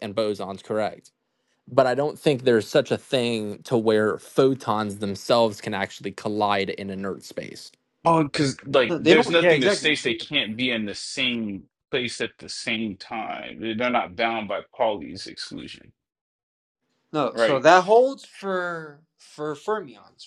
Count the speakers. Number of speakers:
three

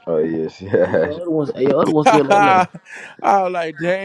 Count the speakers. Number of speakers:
three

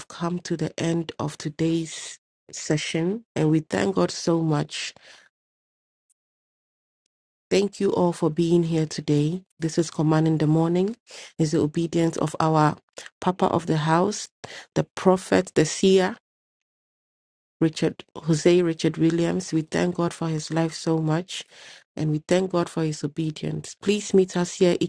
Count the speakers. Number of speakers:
one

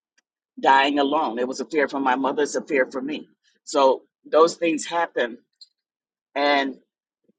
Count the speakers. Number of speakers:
one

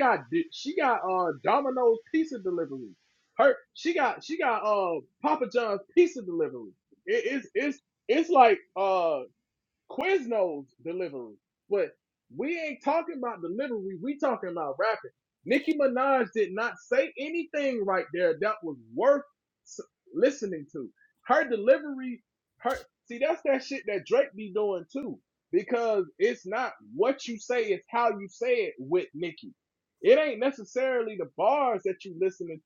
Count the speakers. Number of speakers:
one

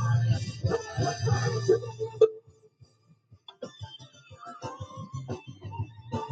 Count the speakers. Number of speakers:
zero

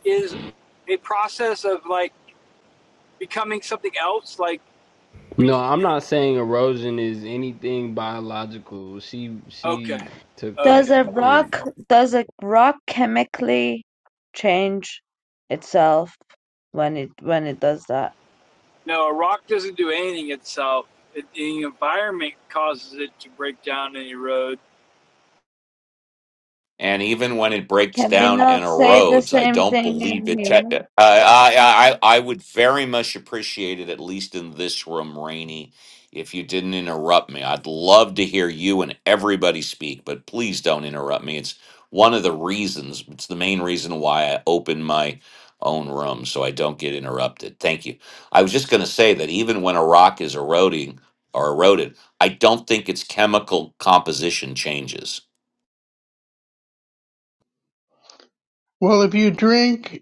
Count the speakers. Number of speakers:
five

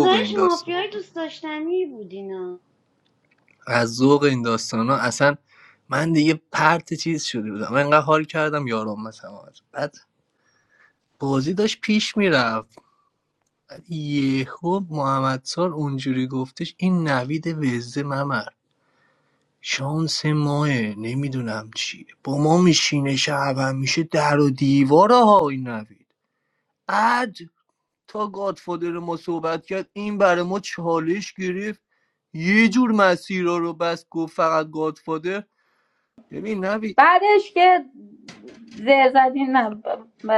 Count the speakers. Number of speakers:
three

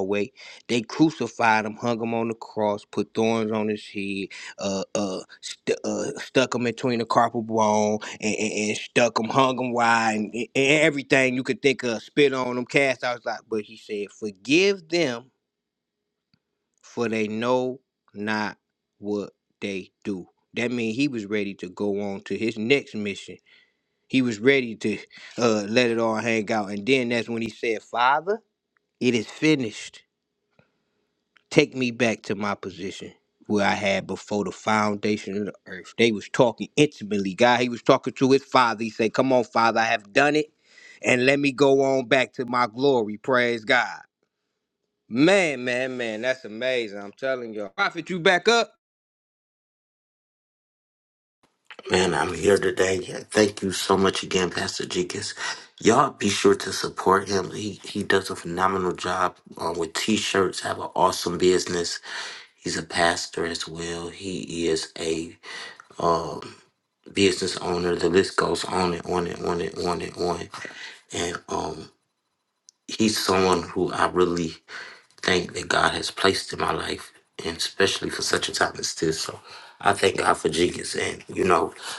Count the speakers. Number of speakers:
two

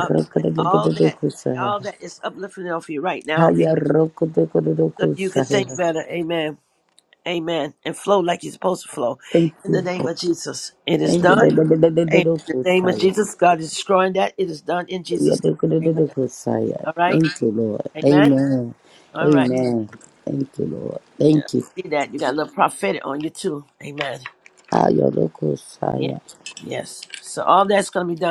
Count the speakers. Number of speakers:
two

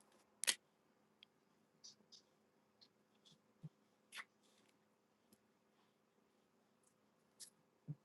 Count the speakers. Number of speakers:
zero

